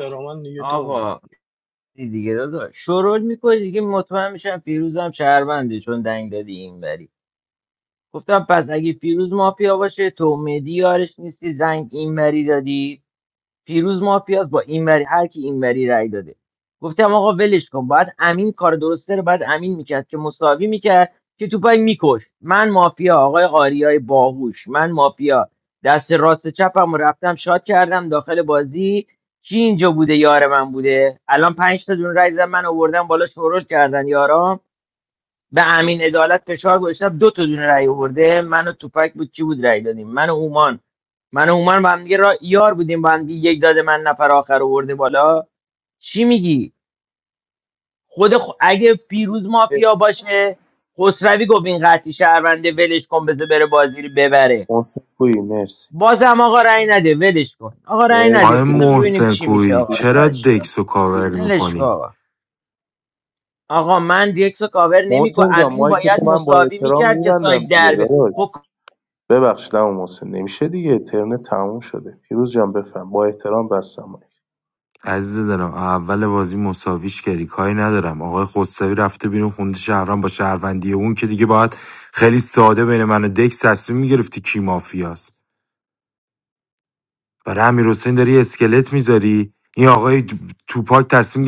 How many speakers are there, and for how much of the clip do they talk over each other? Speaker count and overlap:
four, about 7%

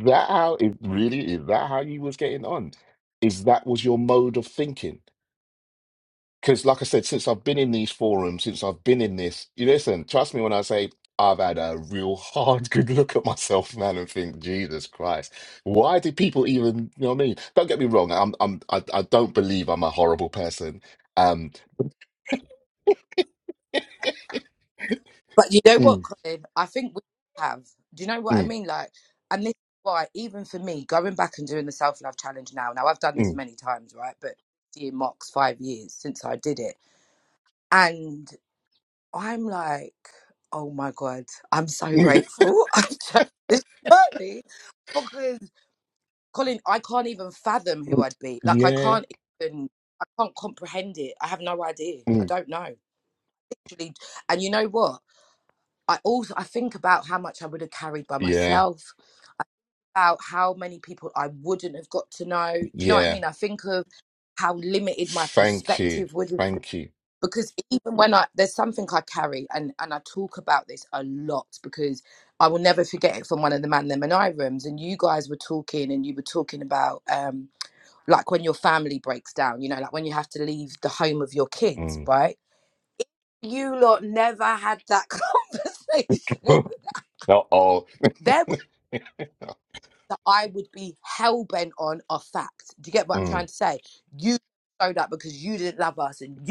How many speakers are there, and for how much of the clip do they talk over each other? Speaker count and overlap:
two, about 4%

